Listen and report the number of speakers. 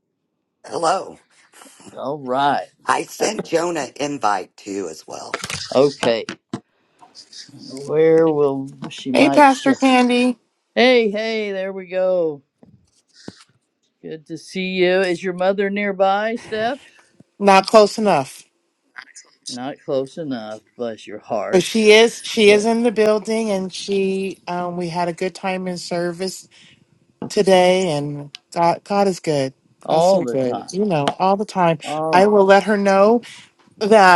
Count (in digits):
3